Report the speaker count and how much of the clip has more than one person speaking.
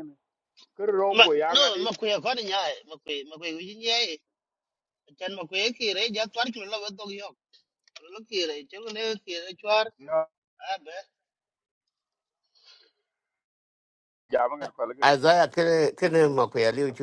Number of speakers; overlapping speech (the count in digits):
3, about 5%